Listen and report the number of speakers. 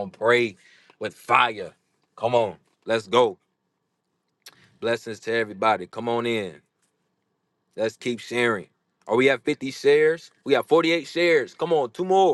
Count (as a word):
one